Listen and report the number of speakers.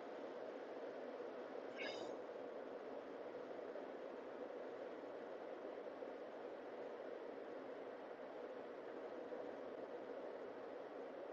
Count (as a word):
zero